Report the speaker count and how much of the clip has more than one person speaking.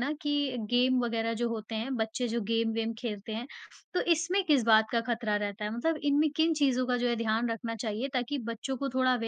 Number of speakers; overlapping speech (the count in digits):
1, no overlap